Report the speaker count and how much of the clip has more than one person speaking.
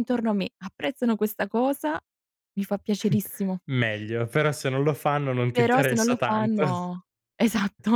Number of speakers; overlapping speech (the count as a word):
two, about 14%